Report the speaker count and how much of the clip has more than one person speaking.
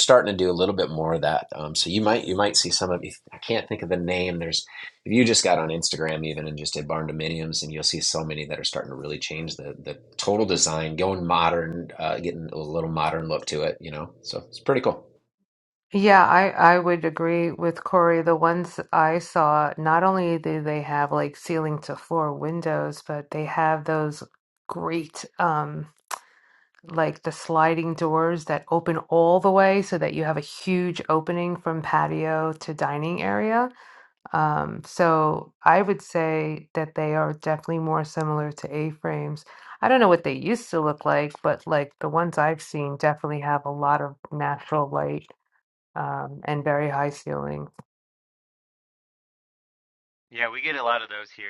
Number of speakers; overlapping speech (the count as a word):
three, no overlap